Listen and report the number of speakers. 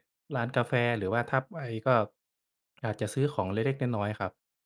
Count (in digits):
1